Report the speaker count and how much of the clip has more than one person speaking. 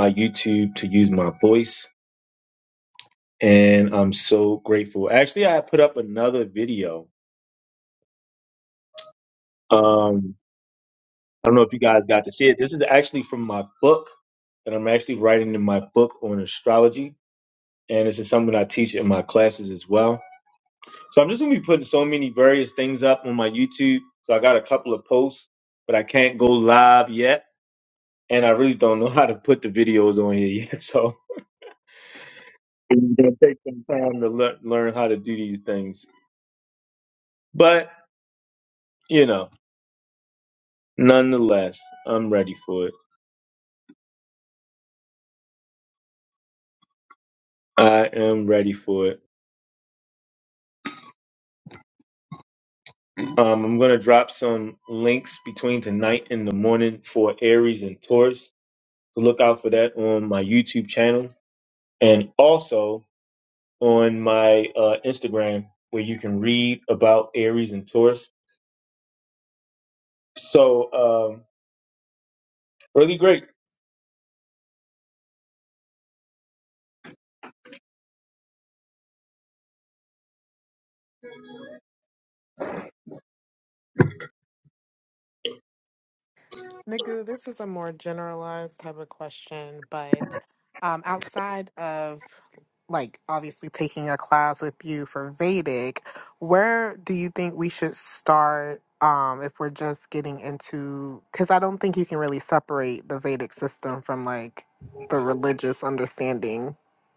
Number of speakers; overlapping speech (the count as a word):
two, no overlap